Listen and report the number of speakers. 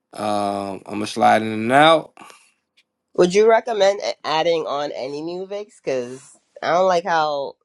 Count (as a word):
two